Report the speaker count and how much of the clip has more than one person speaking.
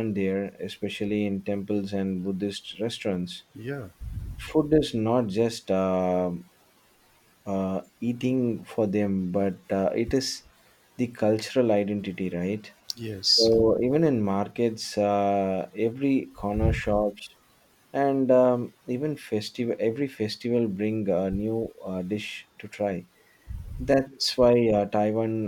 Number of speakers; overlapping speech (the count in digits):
2, about 2%